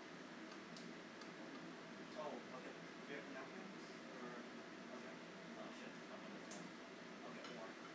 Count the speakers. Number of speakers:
1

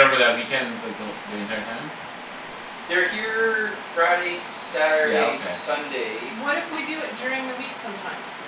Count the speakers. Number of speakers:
3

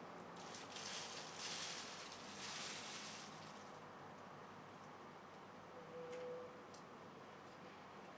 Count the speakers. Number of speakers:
0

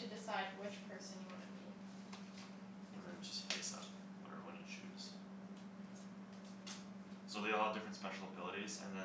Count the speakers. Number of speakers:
2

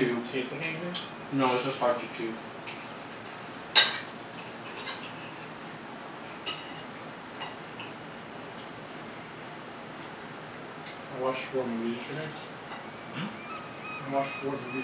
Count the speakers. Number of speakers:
2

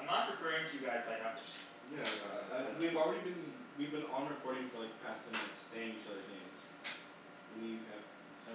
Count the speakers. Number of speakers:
2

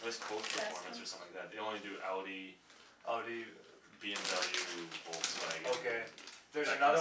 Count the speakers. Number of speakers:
2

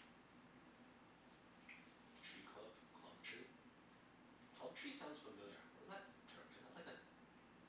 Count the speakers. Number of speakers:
1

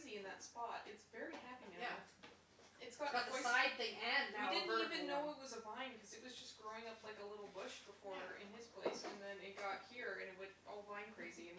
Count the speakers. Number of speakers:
2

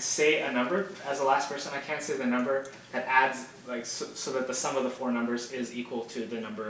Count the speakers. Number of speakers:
1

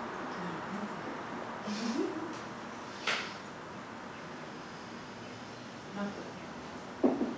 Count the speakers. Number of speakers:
0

